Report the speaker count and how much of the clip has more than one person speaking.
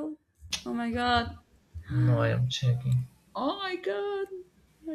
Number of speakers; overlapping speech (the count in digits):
2, no overlap